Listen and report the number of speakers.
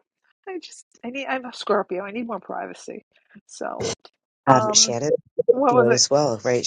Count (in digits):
2